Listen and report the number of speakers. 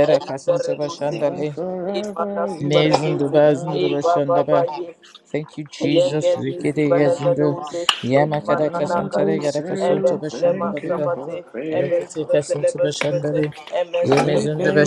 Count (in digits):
3